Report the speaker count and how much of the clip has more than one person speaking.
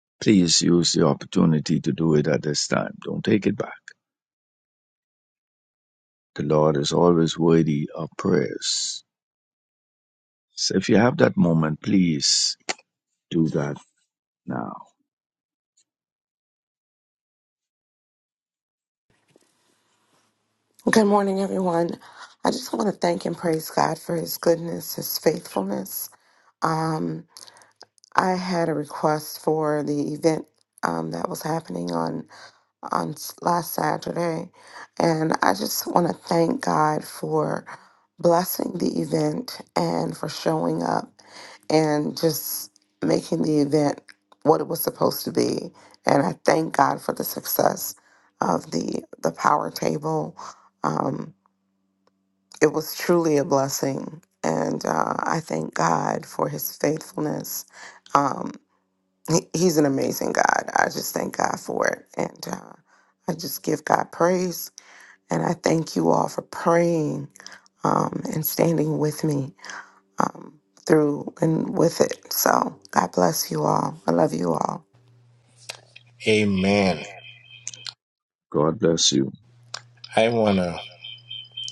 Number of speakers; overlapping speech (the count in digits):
3, no overlap